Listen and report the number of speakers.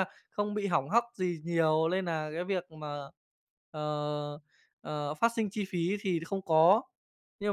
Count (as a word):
one